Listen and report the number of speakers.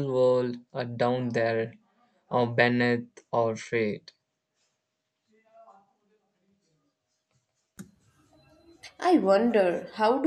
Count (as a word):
two